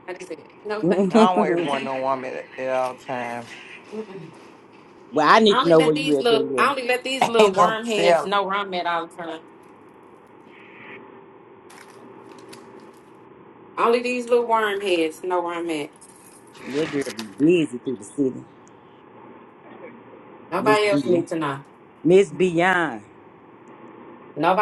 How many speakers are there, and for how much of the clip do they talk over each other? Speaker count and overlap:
3, about 15%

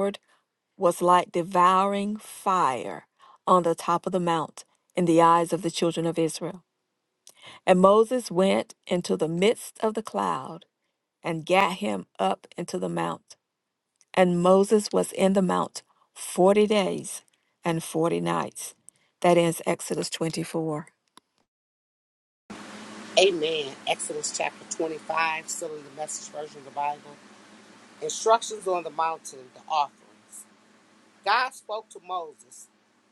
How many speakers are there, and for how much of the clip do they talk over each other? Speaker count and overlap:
2, no overlap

